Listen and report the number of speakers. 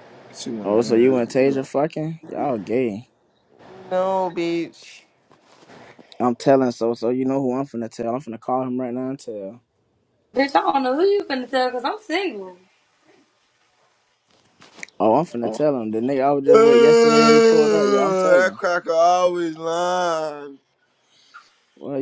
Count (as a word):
four